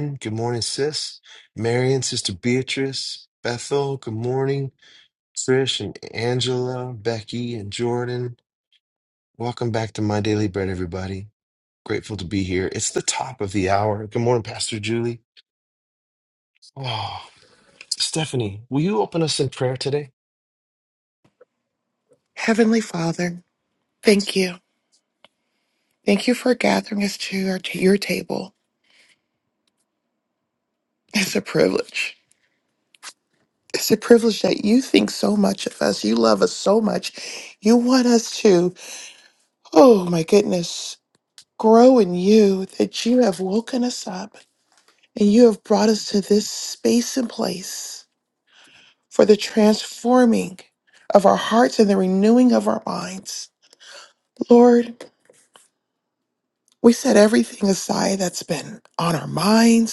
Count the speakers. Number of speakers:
two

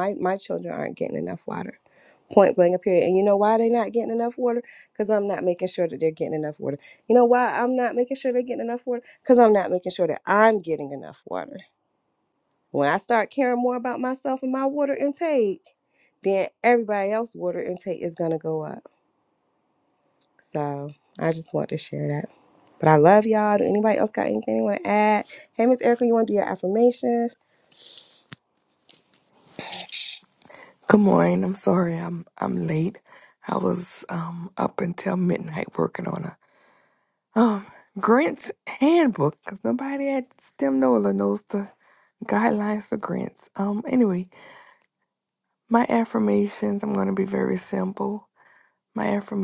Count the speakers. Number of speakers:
two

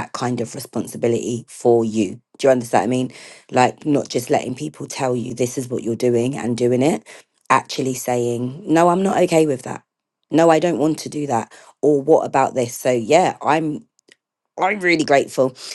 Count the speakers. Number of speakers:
one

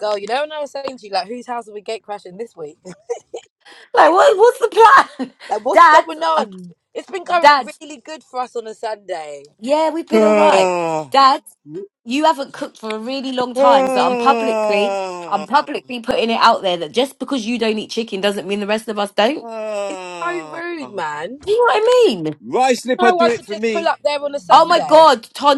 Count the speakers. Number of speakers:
three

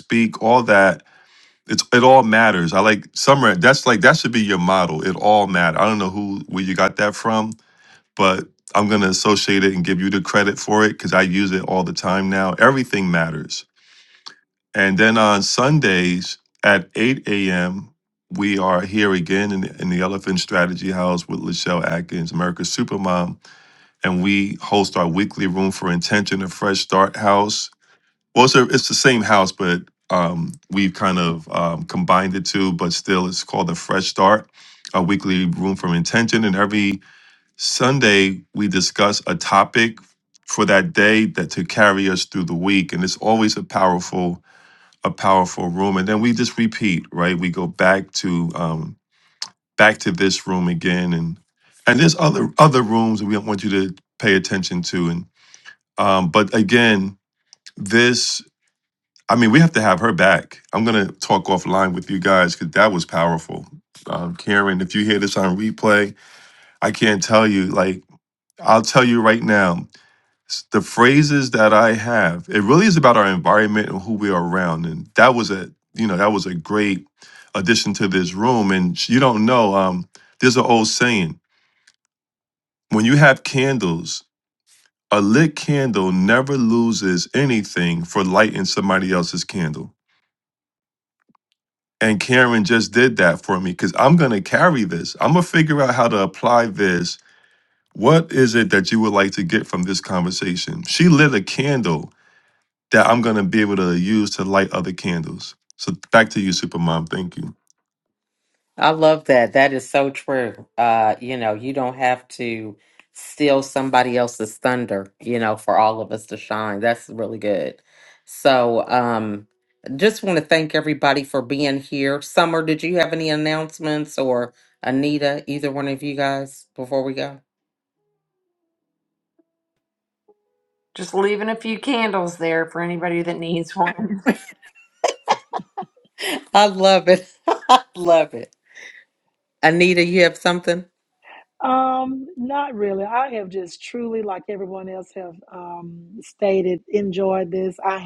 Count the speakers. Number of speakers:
four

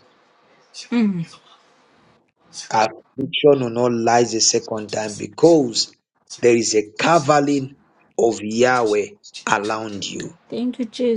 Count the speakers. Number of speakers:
two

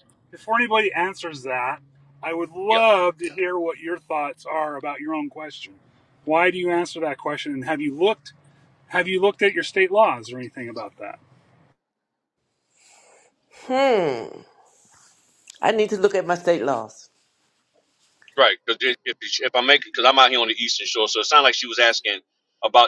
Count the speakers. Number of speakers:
three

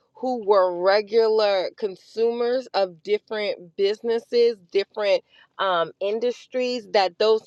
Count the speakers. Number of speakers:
one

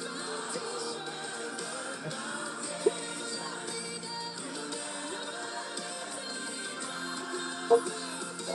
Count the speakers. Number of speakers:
zero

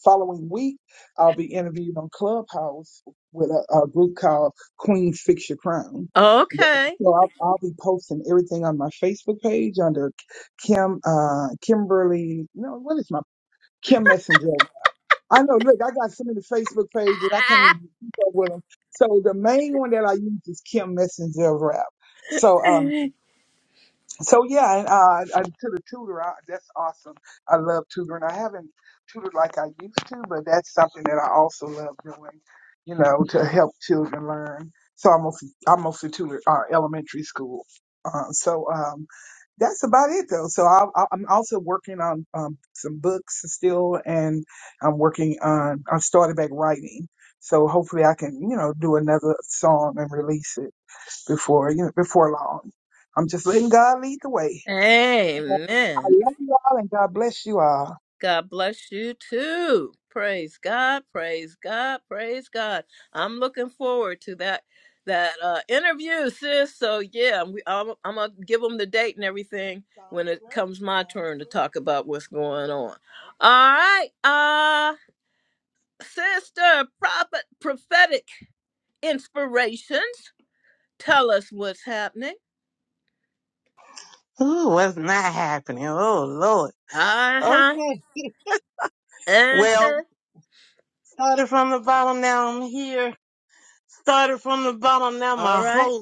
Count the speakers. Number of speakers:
three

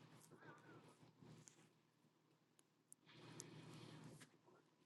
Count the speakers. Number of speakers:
zero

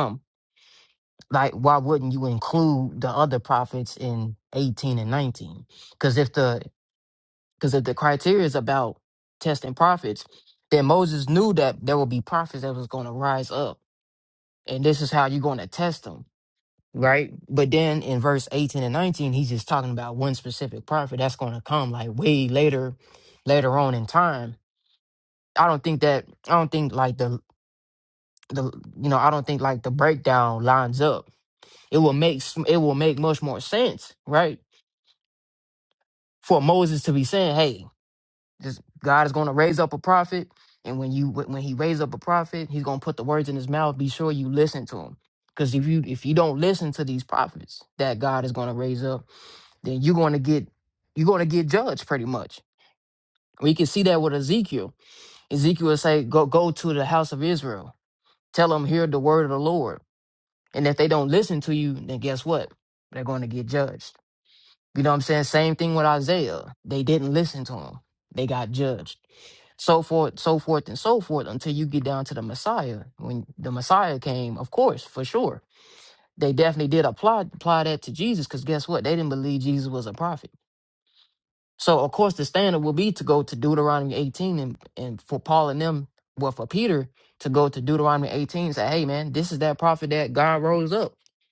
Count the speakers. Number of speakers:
one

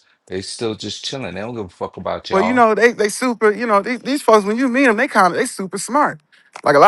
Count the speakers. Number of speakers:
two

